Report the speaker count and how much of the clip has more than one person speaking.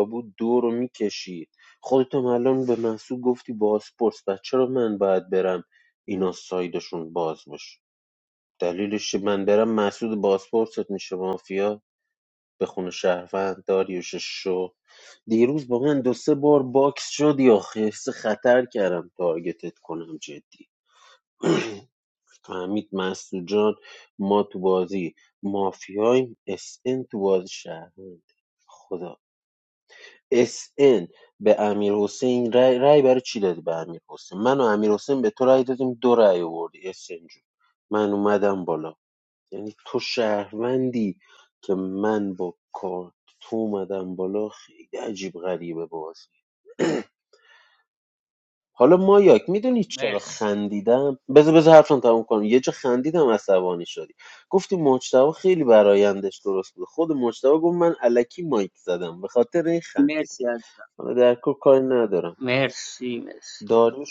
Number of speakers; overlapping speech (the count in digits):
2, about 1%